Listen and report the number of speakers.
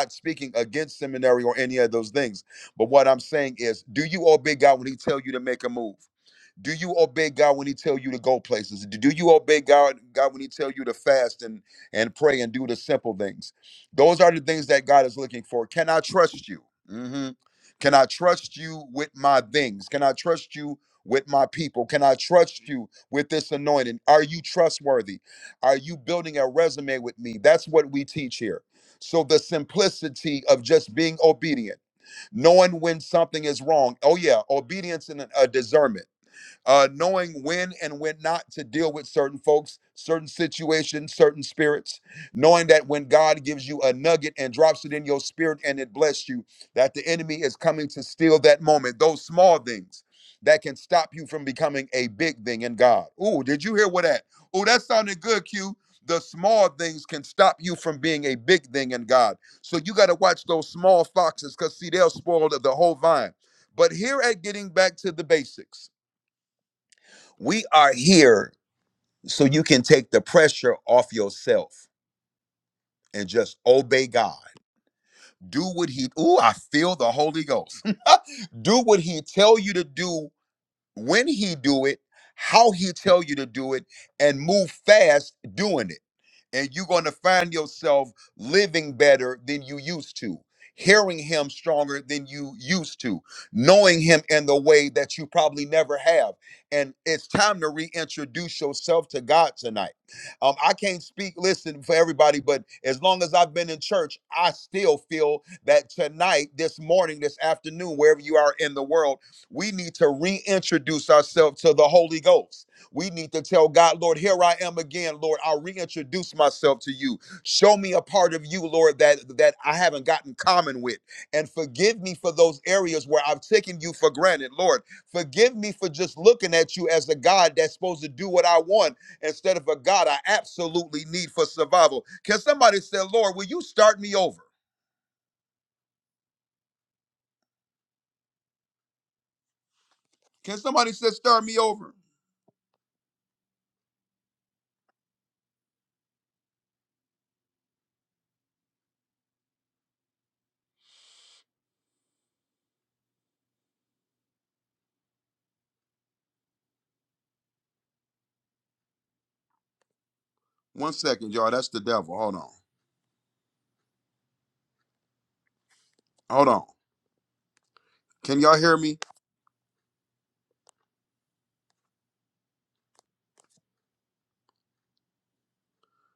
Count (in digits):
1